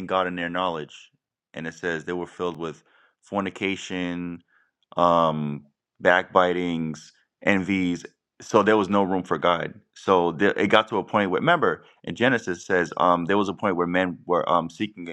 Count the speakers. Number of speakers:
one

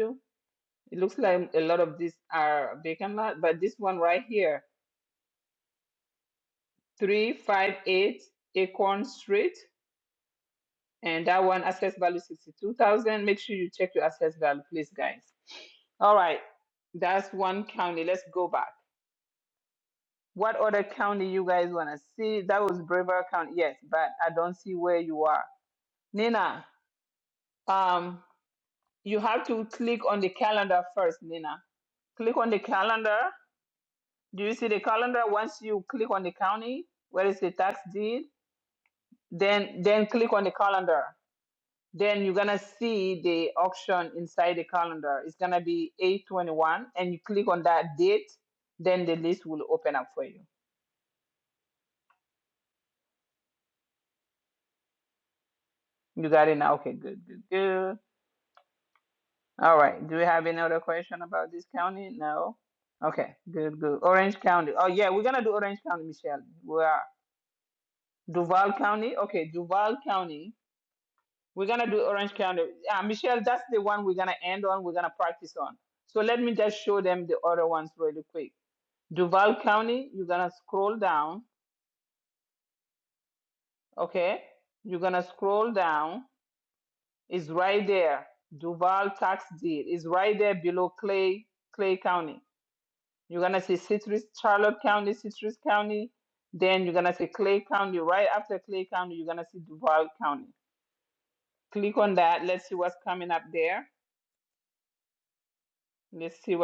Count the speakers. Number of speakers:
one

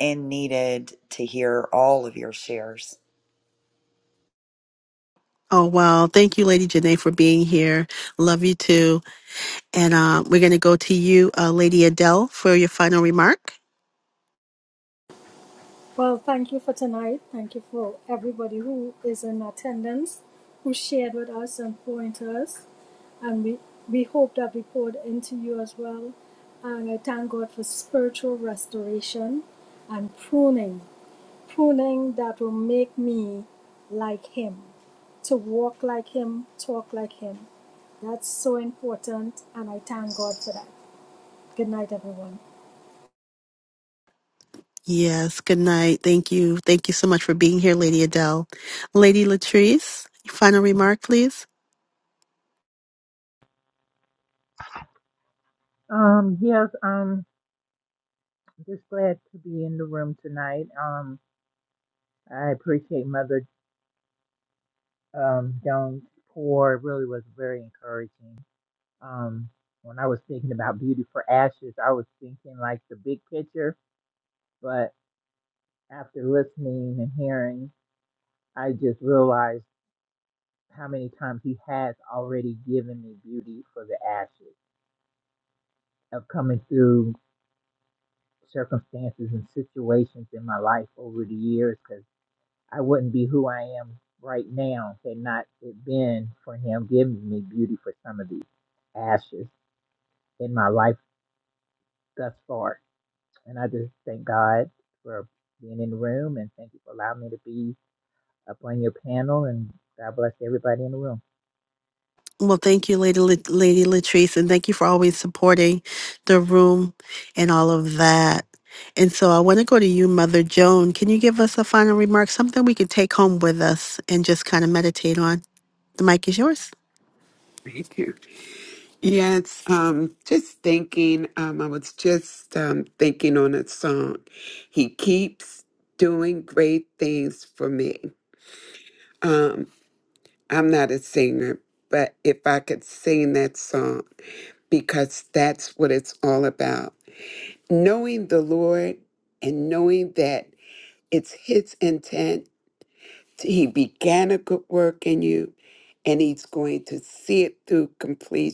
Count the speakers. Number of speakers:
five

